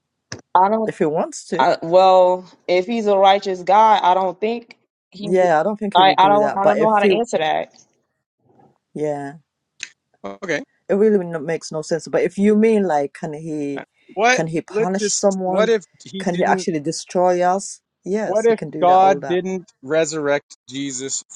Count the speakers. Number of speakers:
3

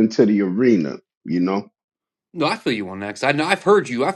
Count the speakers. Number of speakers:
2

